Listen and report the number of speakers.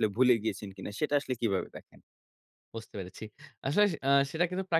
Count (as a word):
two